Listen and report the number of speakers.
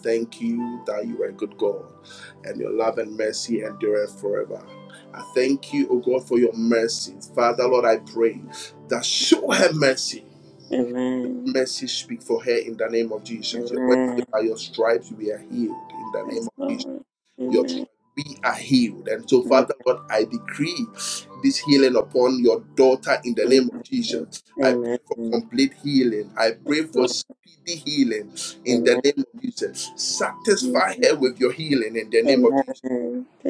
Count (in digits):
2